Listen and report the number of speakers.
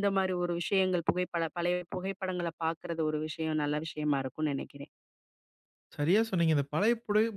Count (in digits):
2